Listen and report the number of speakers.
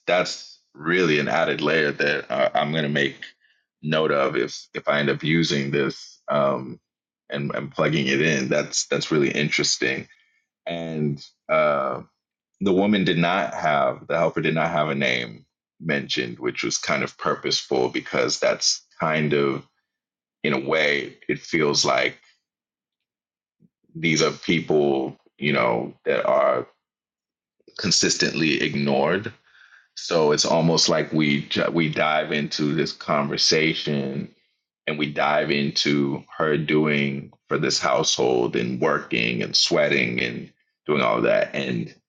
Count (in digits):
1